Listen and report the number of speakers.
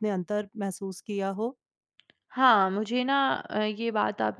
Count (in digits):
2